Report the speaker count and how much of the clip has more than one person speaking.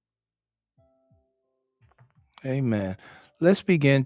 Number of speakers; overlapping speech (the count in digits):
1, no overlap